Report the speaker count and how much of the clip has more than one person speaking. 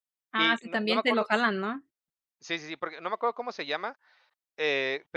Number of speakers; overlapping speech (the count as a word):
two, about 17%